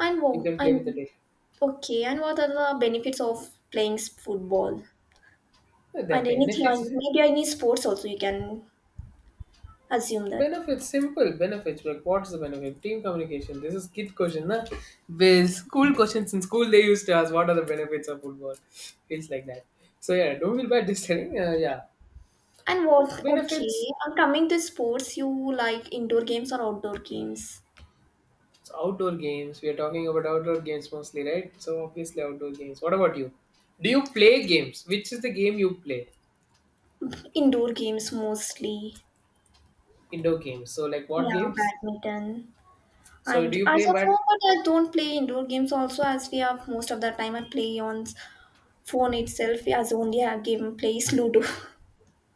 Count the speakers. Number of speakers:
2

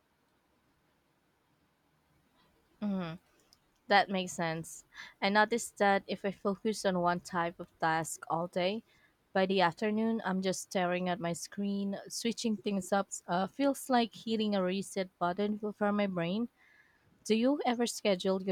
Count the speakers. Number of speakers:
1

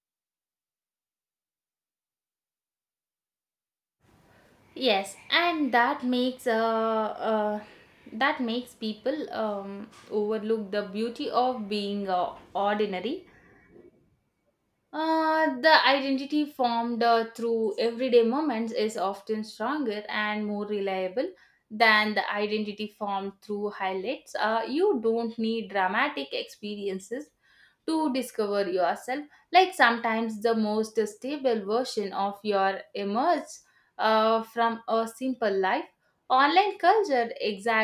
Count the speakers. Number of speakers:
1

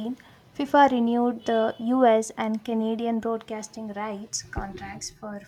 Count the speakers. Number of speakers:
1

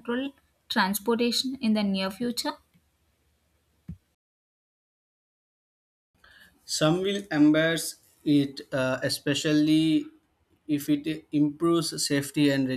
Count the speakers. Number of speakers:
2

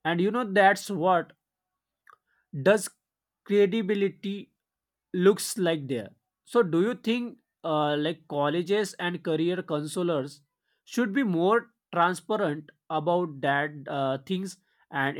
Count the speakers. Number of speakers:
1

